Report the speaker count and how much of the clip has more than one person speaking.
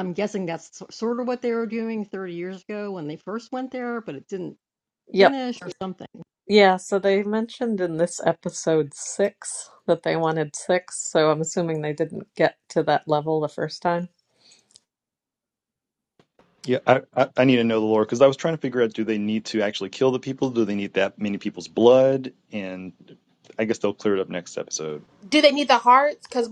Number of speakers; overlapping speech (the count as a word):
four, under 1%